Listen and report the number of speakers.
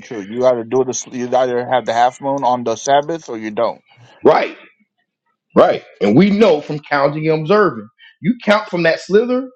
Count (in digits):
2